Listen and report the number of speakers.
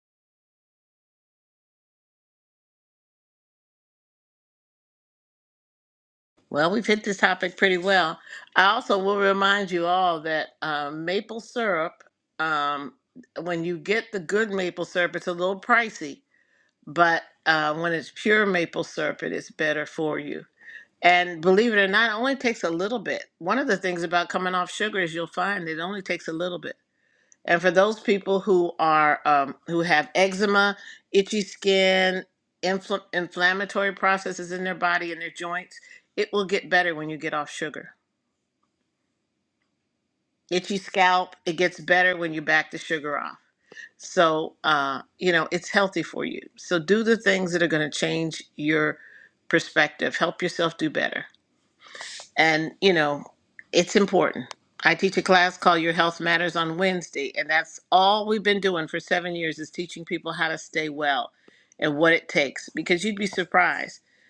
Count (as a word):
one